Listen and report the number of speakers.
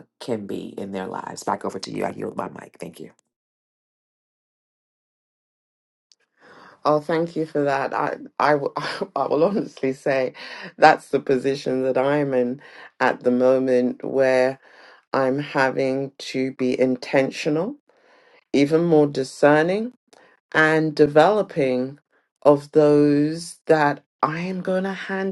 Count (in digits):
2